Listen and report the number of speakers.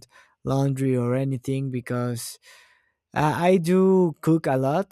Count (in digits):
1